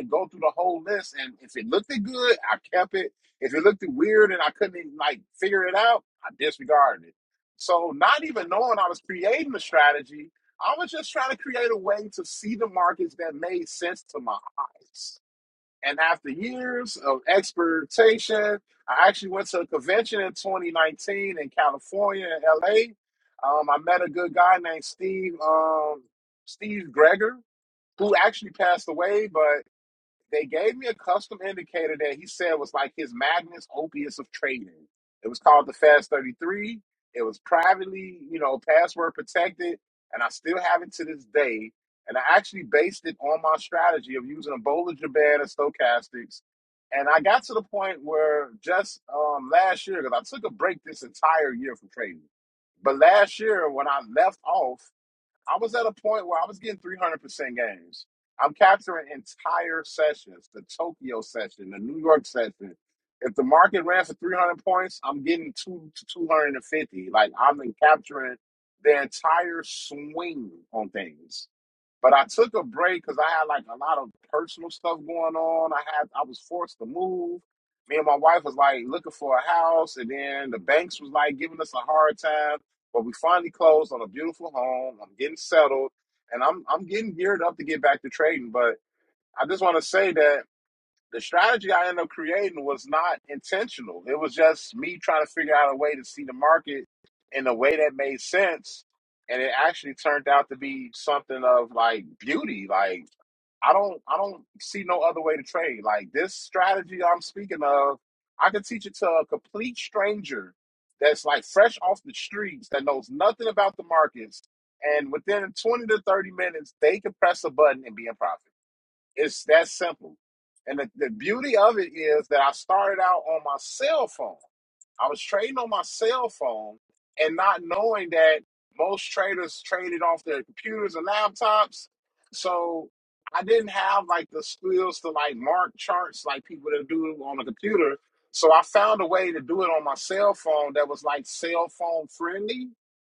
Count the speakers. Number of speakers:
1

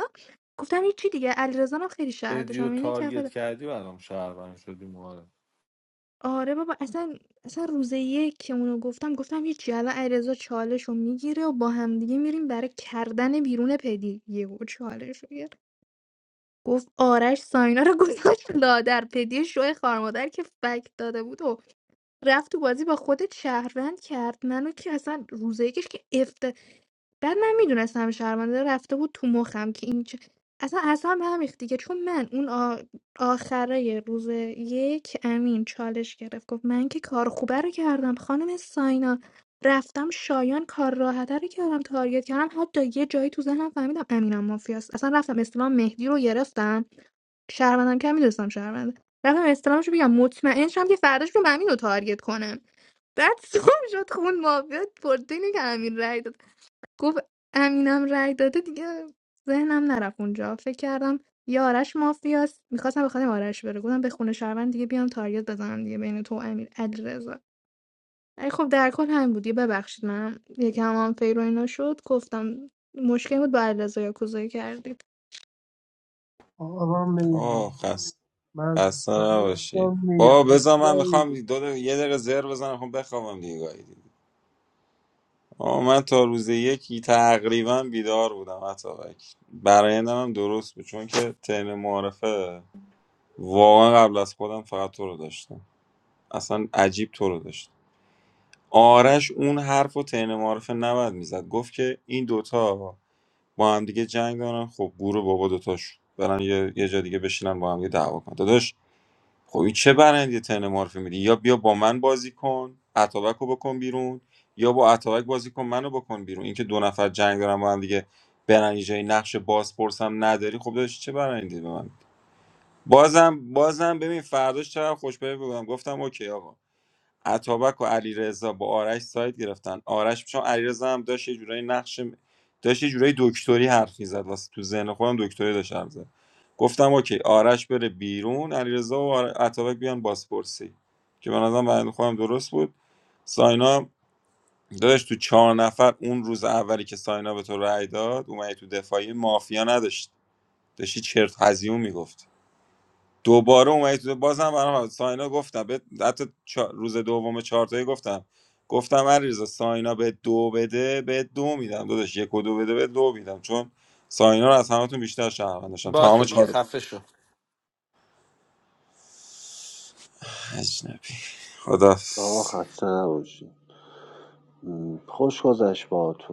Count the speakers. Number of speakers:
5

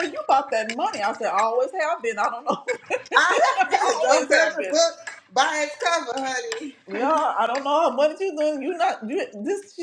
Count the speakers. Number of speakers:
2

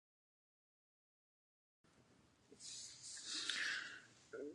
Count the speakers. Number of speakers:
0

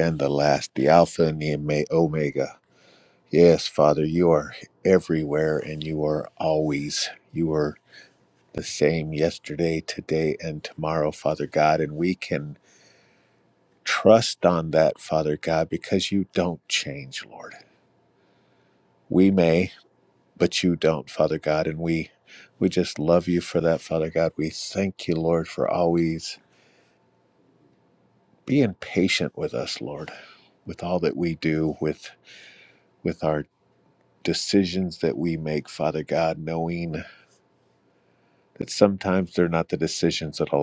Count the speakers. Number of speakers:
1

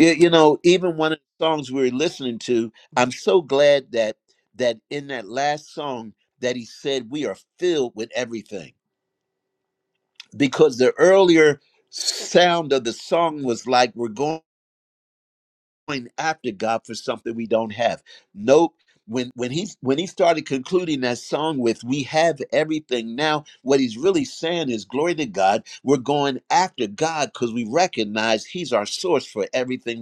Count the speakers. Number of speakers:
1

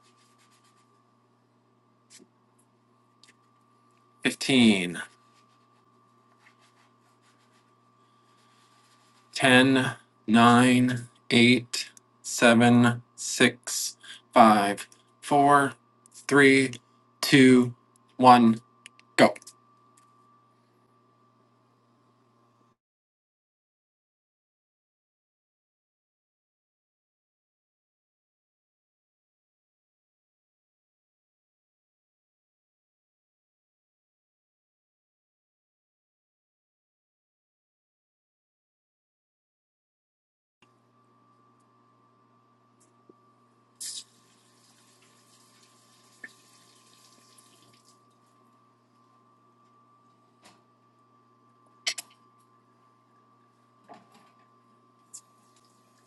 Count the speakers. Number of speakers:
1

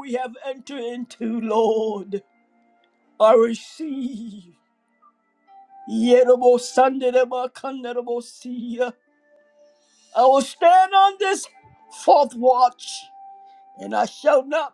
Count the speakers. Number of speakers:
1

